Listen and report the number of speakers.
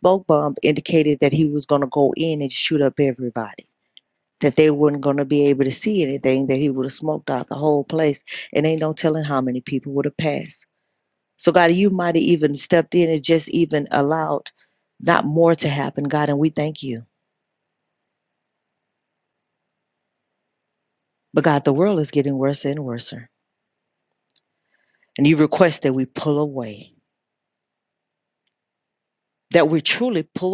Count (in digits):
1